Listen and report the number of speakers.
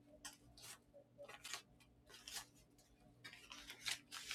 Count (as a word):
zero